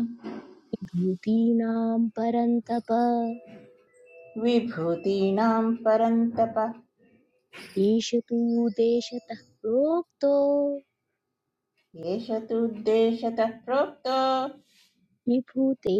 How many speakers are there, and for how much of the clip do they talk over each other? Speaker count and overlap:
two, no overlap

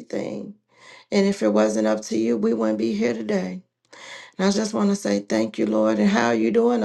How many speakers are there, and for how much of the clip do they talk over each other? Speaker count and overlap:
one, no overlap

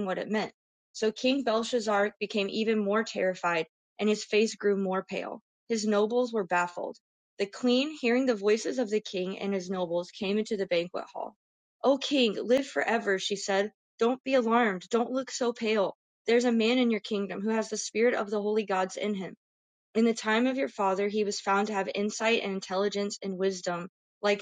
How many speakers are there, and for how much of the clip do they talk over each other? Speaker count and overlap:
one, no overlap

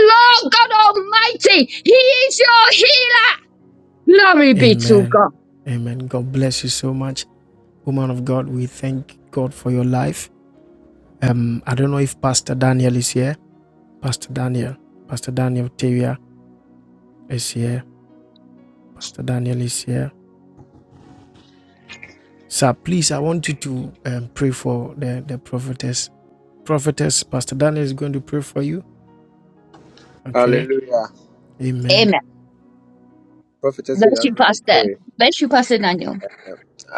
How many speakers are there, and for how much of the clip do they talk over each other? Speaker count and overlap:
three, about 6%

